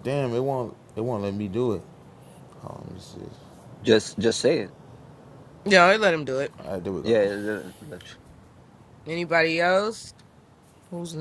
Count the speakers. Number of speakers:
three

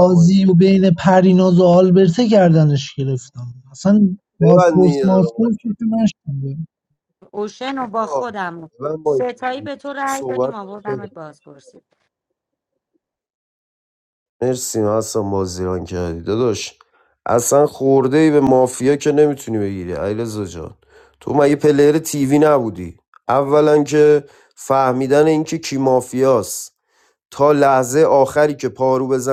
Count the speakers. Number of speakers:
three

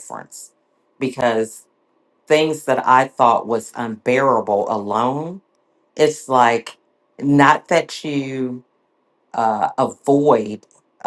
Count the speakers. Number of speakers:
one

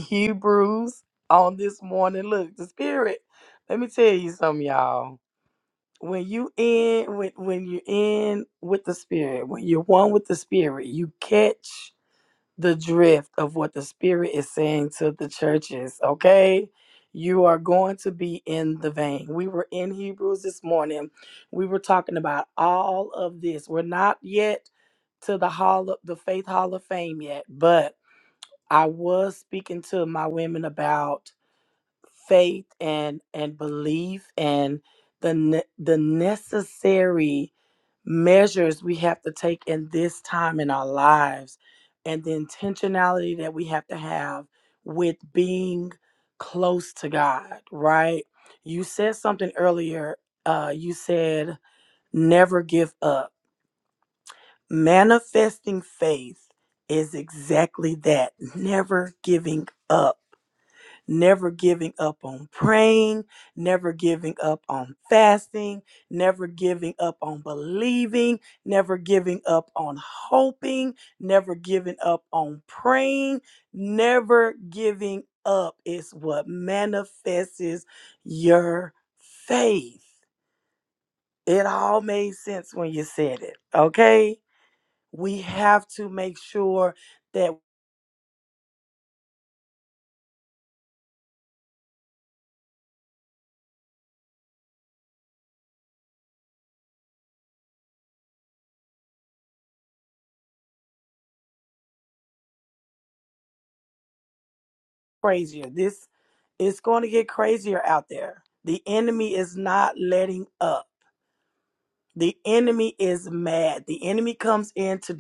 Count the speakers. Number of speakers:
one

